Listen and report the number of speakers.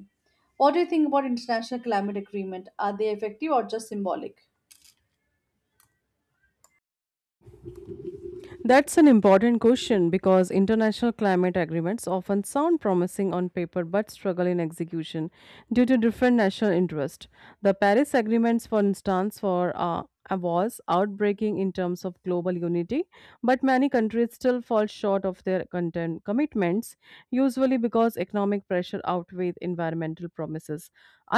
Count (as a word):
two